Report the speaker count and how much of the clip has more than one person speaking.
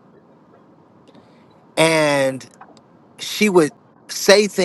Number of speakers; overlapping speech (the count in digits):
1, no overlap